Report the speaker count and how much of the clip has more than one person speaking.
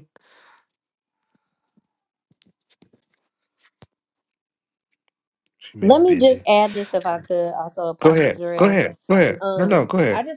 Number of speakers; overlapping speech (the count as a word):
two, about 21%